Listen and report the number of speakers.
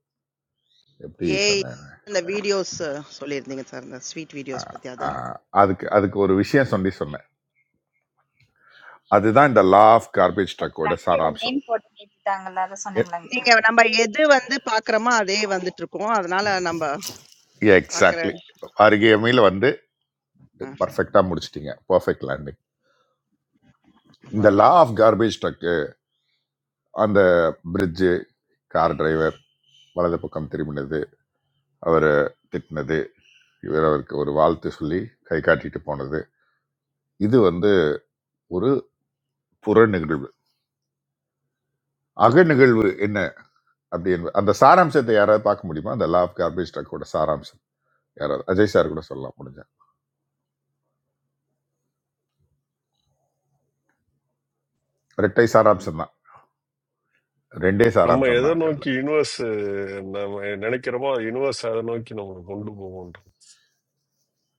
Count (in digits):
4